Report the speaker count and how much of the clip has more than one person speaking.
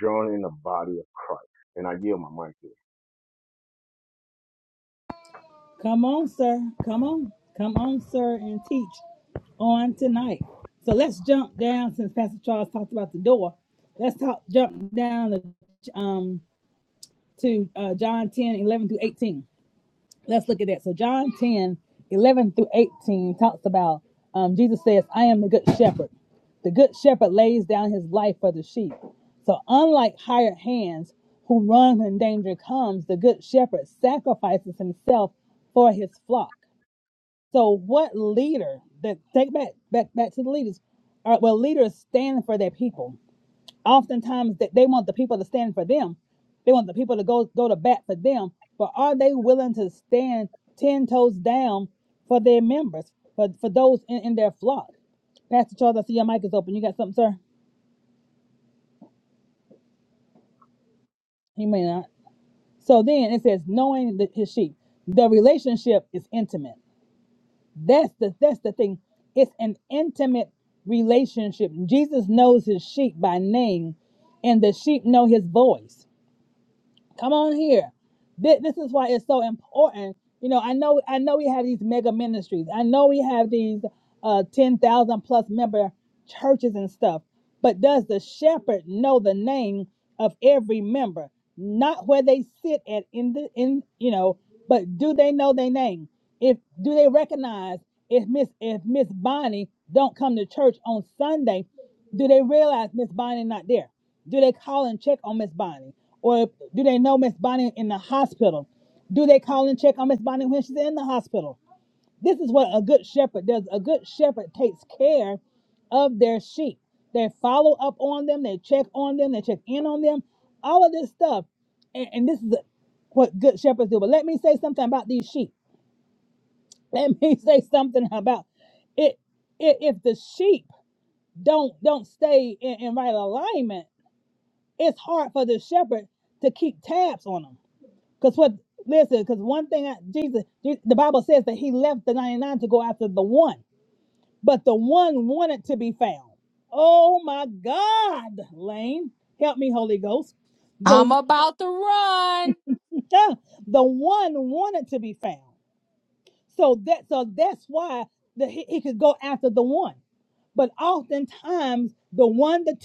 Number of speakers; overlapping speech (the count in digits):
3, under 1%